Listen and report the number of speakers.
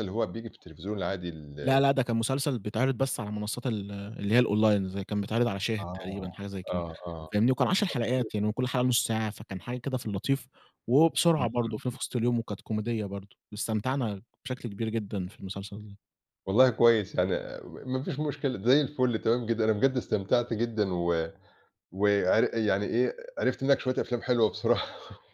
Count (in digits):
2